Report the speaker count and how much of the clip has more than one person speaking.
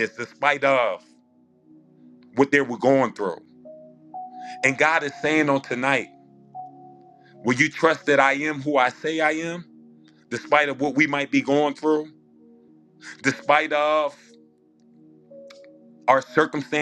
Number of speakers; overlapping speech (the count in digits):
1, no overlap